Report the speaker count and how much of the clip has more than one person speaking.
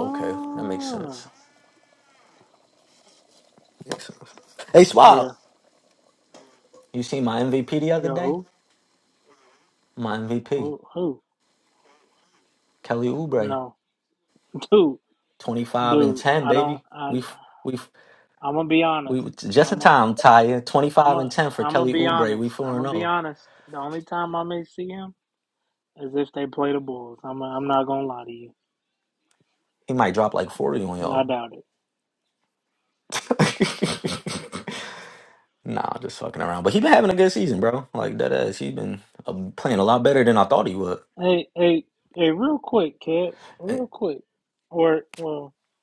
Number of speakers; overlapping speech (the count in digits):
2, about 12%